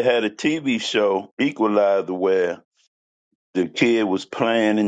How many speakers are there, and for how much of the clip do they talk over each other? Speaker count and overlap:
one, no overlap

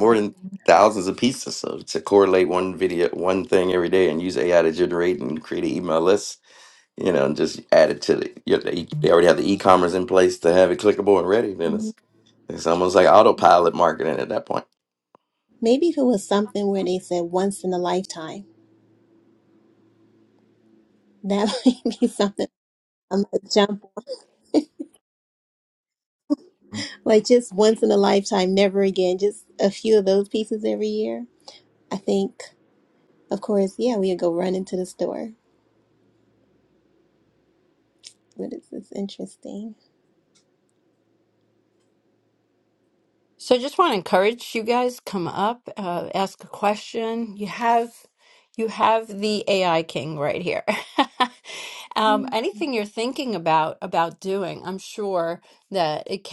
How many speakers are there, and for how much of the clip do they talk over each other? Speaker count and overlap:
three, about 1%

